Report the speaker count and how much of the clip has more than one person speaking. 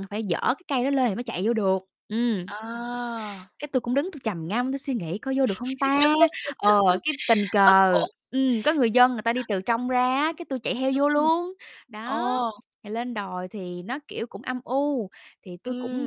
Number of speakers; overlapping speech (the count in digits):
2, about 10%